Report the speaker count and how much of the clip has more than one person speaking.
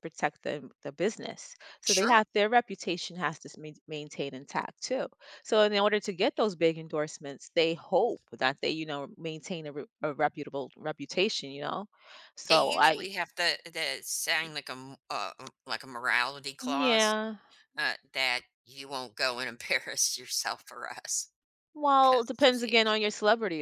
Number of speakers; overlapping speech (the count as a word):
two, about 9%